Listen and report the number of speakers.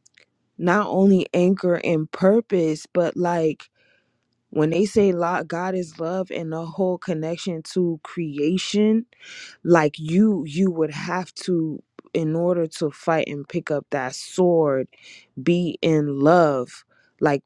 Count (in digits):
1